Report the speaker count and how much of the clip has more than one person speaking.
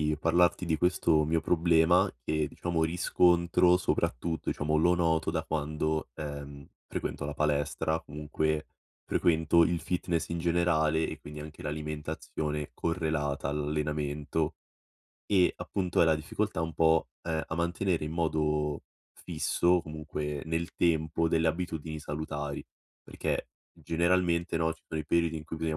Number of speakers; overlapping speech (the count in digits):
1, no overlap